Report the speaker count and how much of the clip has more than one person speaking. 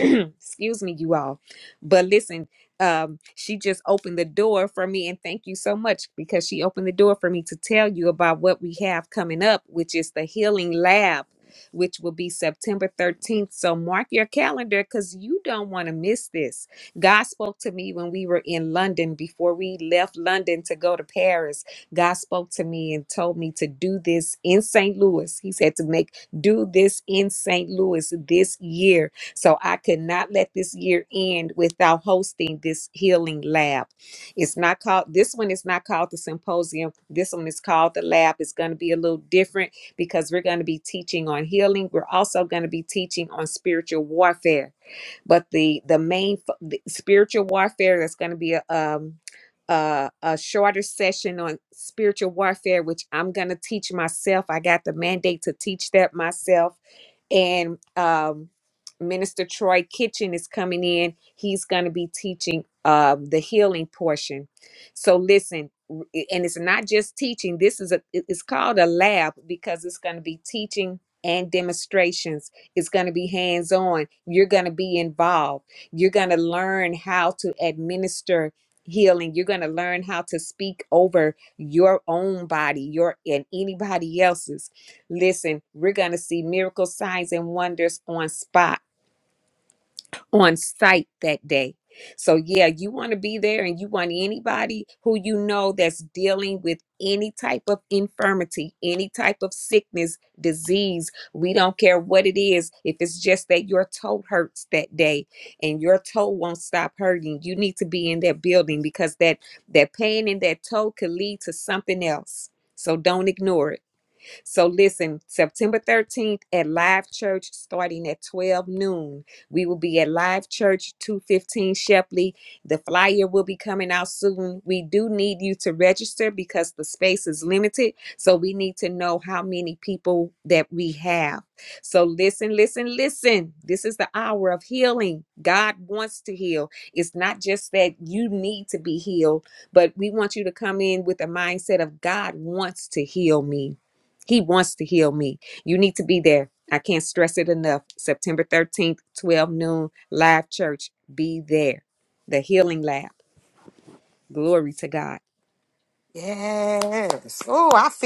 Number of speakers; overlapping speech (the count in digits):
2, no overlap